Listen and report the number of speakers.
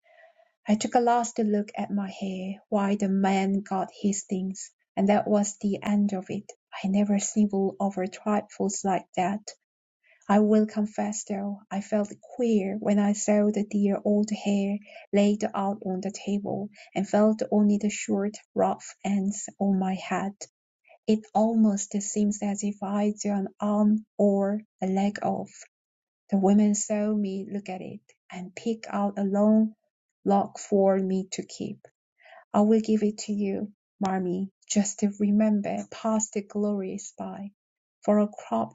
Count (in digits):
1